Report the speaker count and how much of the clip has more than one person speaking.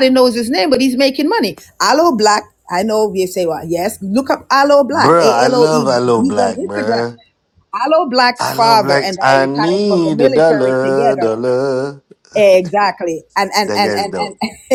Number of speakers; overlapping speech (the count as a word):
two, about 39%